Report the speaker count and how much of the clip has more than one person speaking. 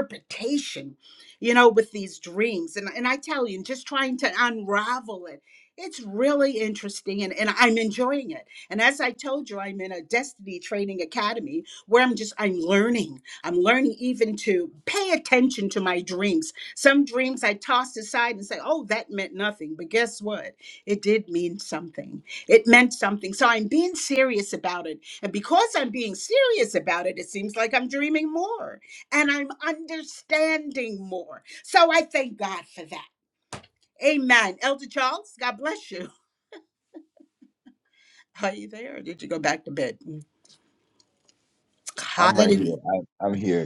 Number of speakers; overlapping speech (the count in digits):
2, about 1%